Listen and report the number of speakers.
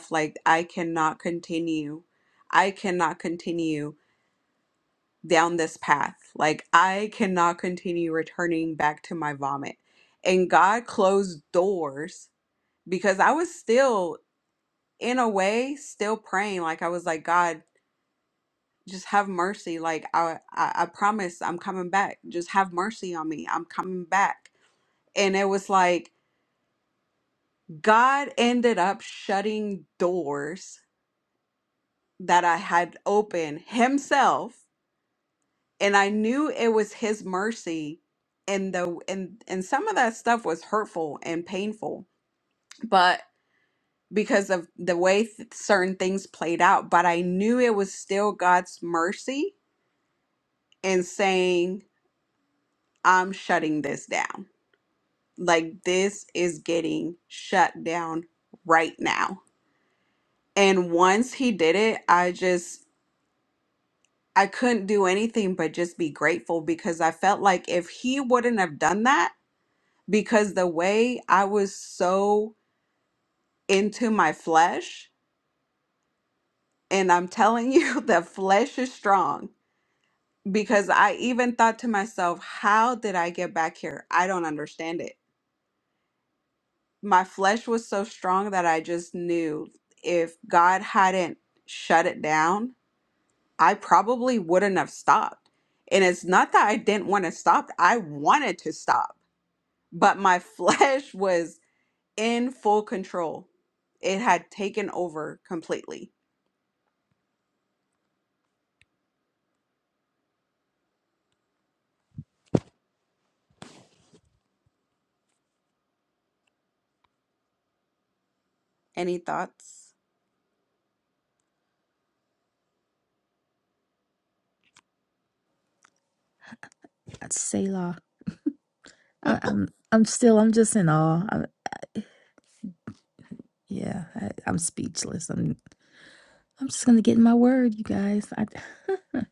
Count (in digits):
2